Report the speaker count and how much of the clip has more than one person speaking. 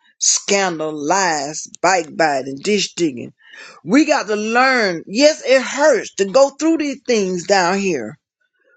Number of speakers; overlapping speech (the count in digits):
1, no overlap